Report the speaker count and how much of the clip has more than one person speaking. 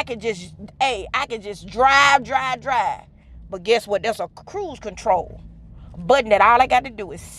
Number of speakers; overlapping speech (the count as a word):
one, no overlap